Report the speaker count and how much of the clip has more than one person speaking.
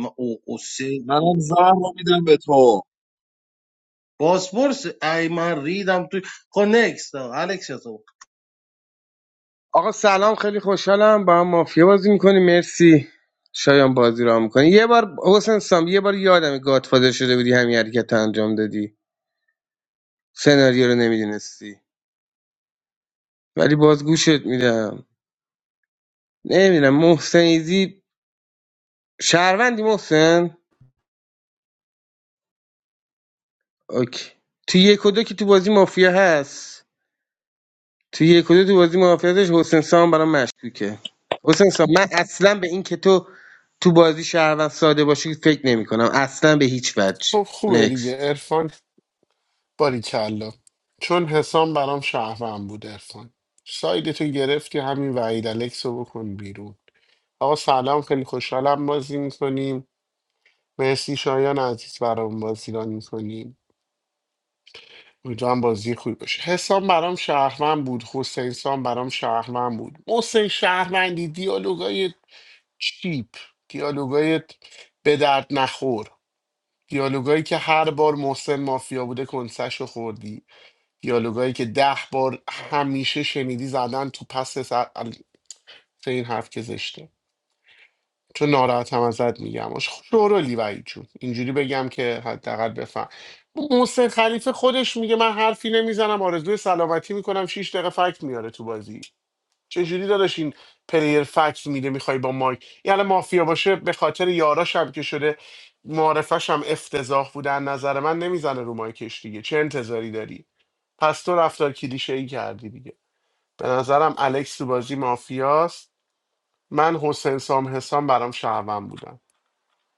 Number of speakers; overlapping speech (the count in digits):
4, under 1%